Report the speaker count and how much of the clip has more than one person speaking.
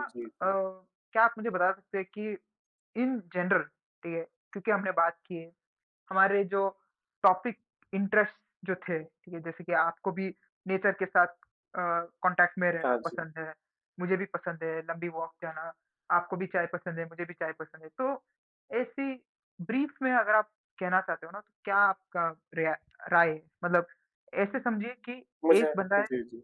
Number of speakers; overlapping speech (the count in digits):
2, about 4%